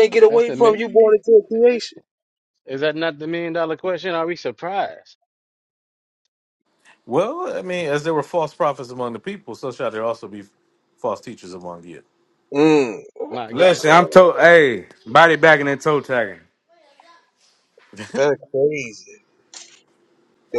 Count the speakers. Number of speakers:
four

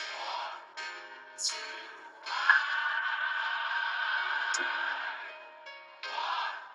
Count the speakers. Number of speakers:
zero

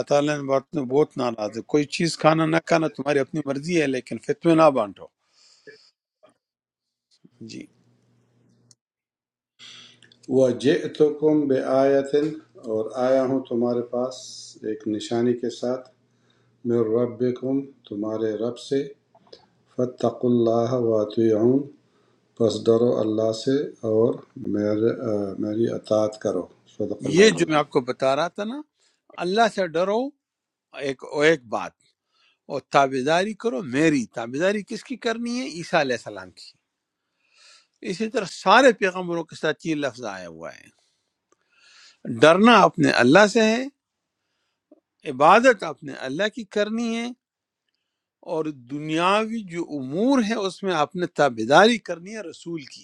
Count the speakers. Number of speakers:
two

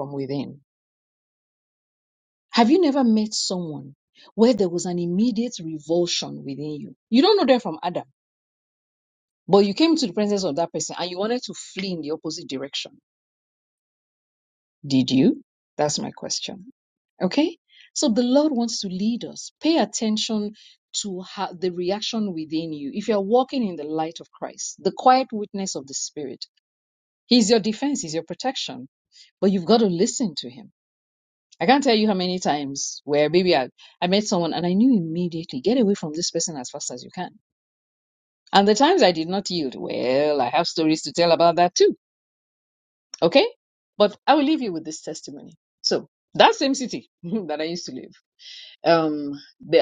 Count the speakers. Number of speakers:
one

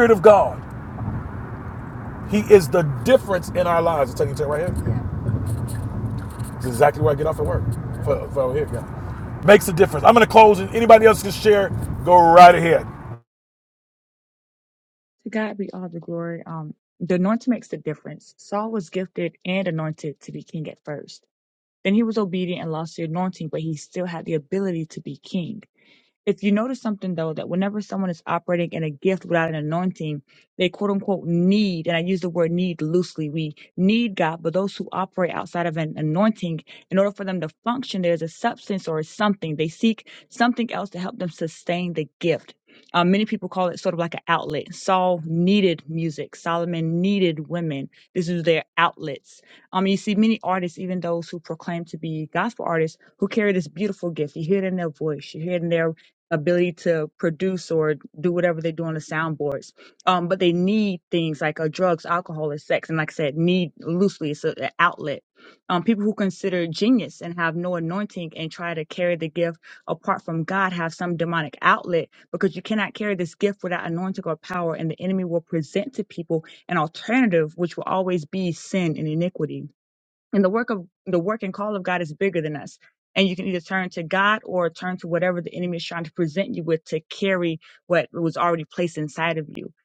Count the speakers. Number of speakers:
two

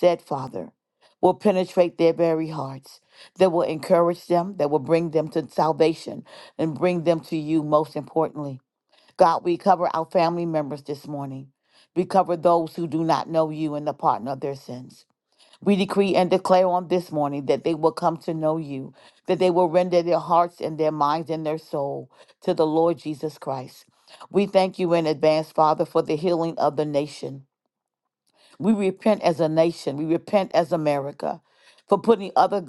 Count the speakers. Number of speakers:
one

